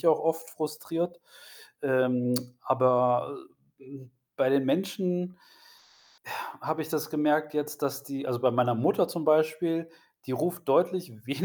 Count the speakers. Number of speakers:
1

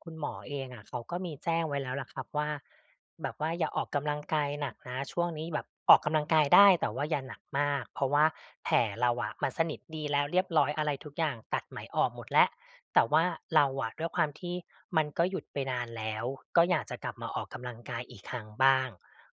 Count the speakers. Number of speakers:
1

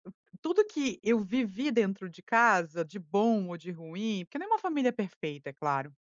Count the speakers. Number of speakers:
1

